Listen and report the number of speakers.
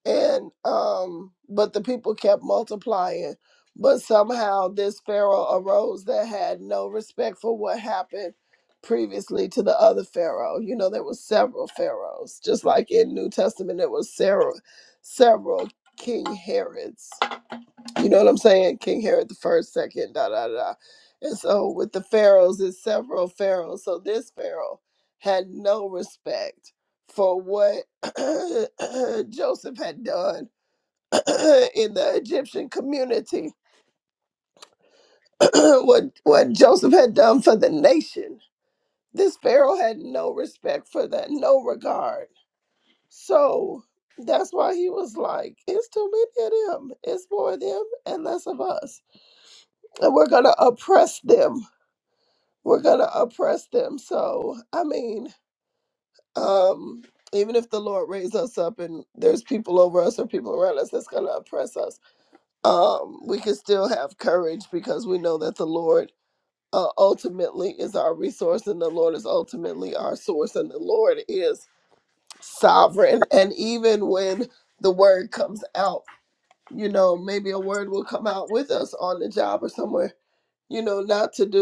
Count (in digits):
1